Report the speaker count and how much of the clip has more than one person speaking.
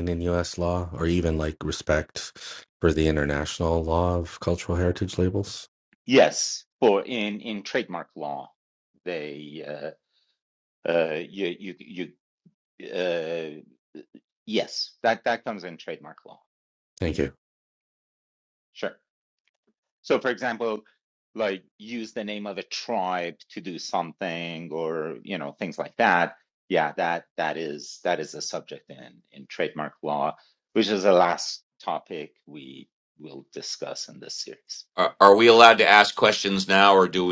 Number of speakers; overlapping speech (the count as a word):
three, no overlap